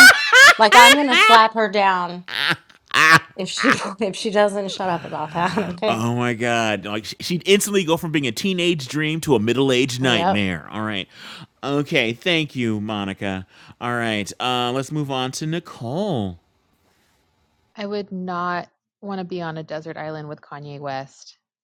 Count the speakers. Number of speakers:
three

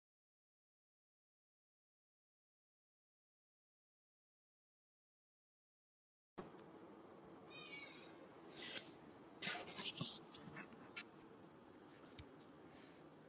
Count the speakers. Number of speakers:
zero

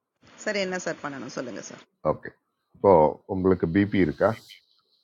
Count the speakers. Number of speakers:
two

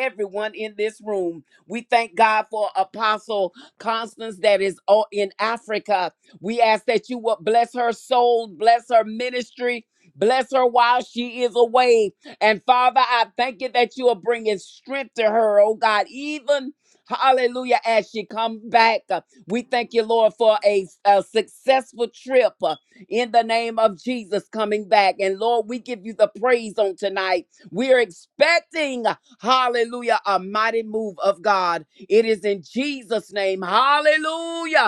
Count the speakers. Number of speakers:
one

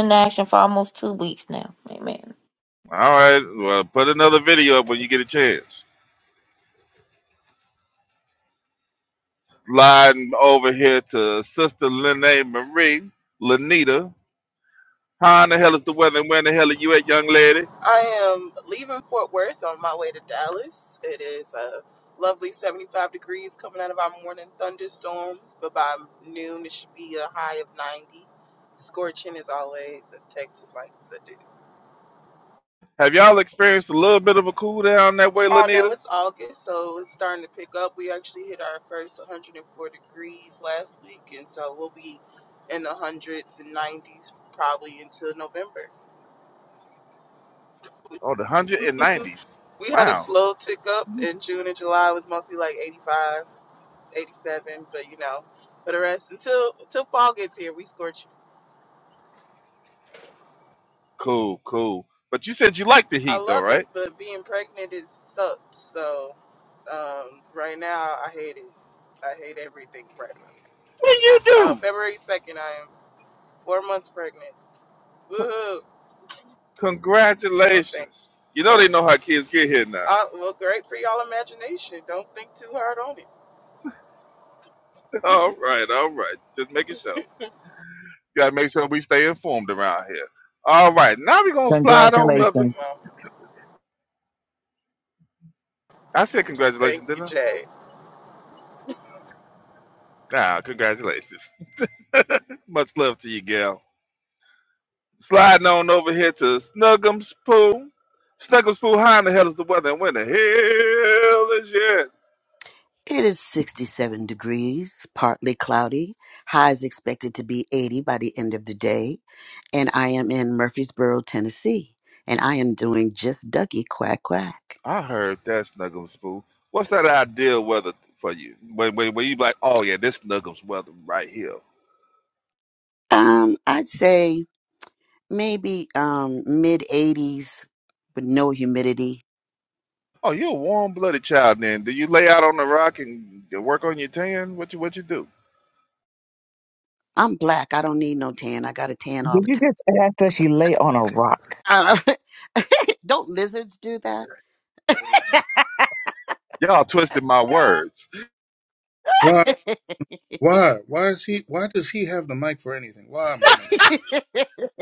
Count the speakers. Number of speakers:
six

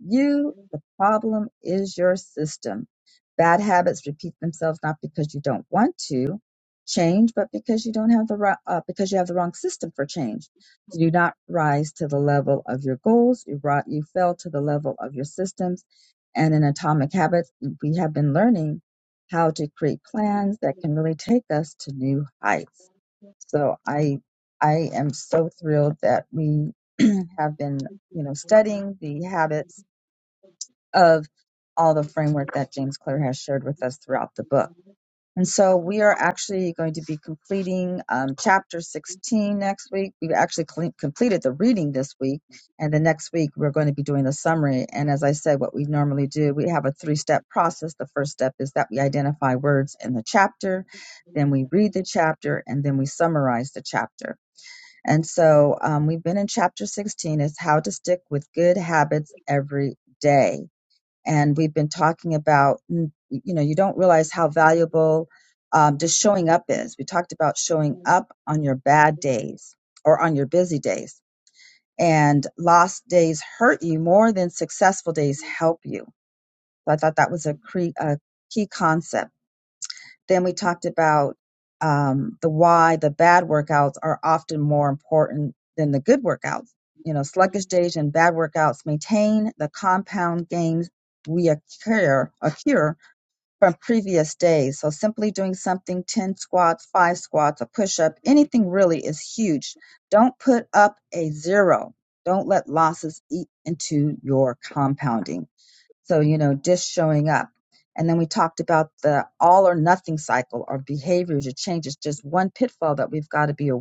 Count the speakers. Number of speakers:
one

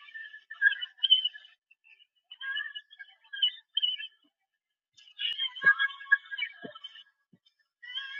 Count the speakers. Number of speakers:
zero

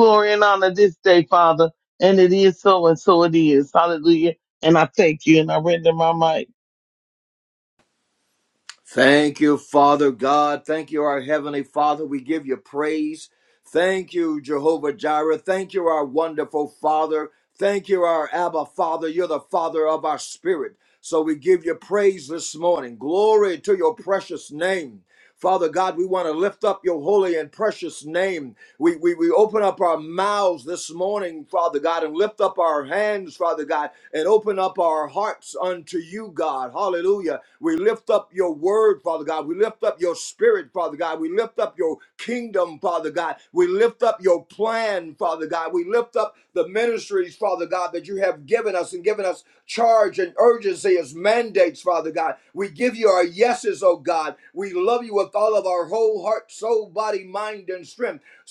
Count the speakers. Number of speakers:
two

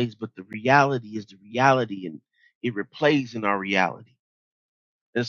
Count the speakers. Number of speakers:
one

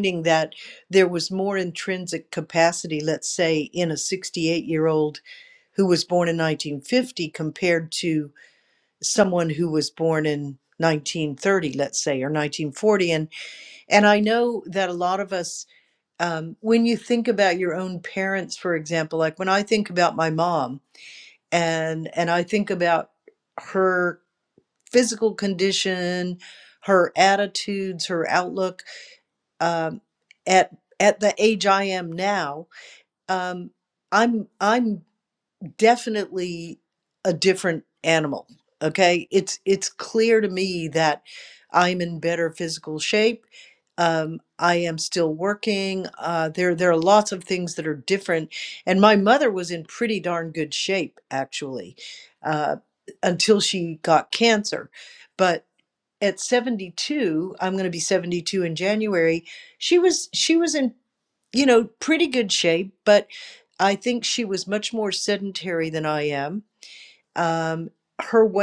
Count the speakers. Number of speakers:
one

